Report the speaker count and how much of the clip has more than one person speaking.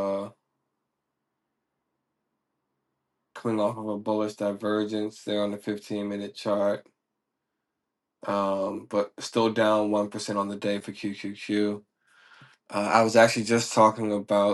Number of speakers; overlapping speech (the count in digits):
1, no overlap